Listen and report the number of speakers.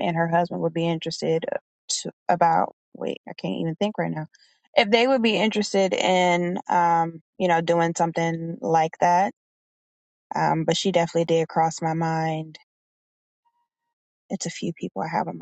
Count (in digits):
1